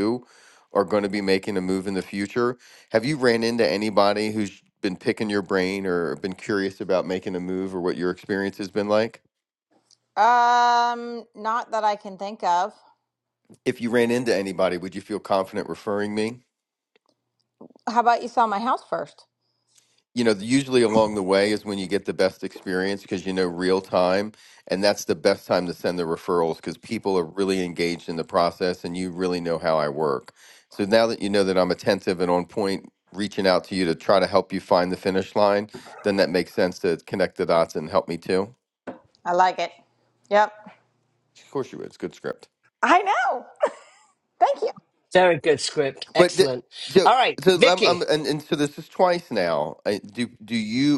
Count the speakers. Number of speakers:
3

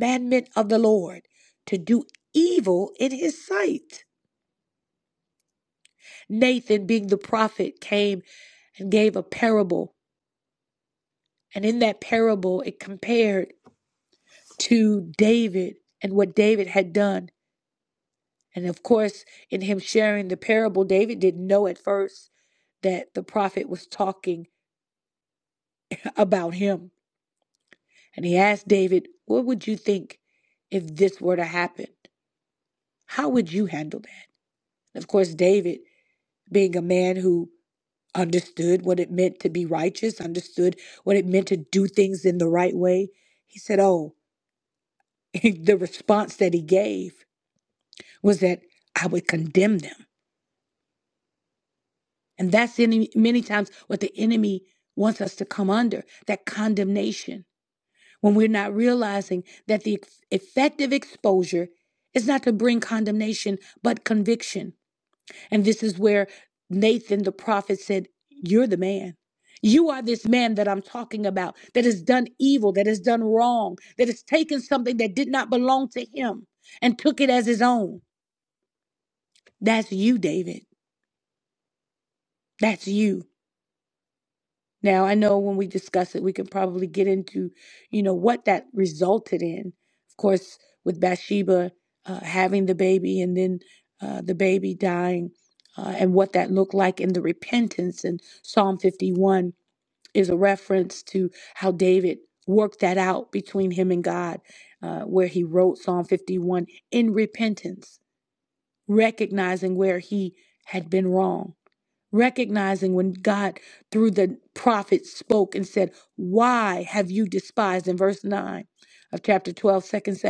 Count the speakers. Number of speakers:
1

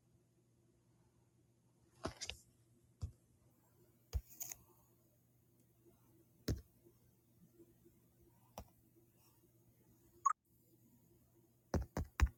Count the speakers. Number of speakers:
0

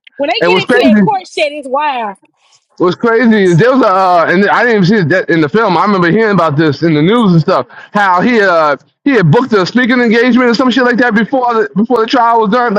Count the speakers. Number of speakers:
2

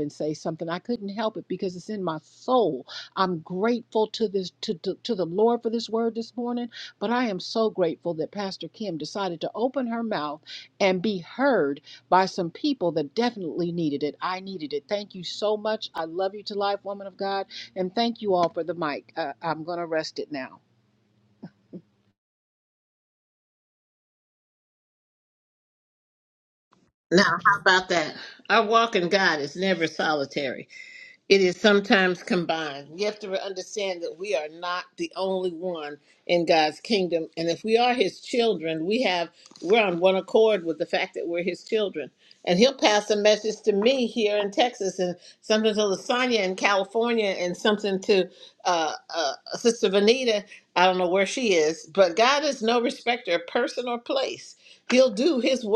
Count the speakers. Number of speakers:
2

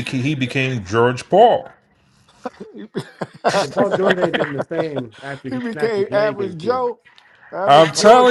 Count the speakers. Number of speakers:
3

